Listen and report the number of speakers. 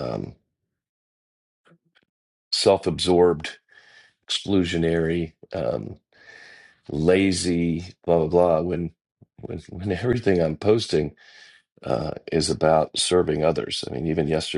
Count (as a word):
one